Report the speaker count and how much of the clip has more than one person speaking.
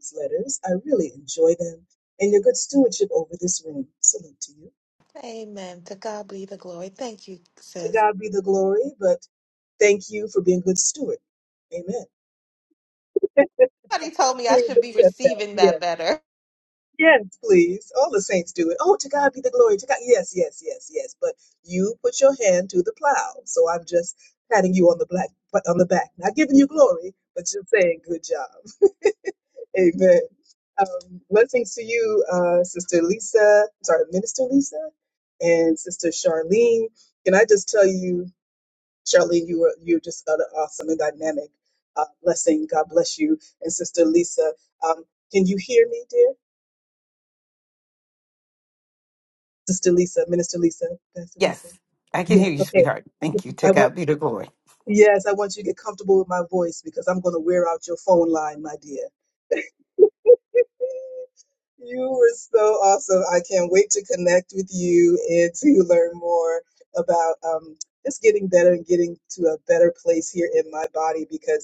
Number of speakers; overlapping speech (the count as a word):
three, about 4%